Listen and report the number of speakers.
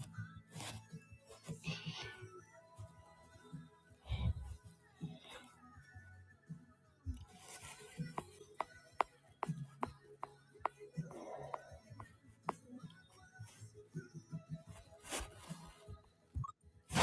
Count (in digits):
0